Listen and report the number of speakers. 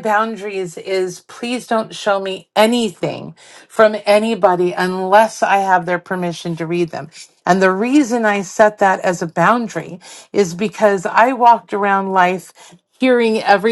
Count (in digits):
1